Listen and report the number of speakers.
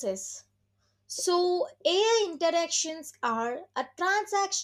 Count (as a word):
one